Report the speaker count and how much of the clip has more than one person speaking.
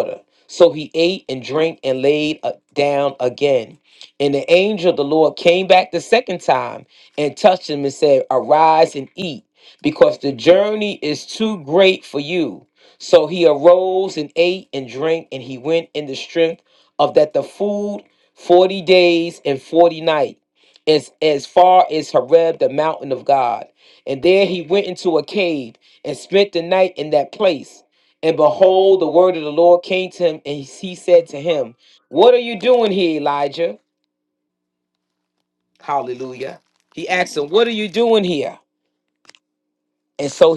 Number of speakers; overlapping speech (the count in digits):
1, no overlap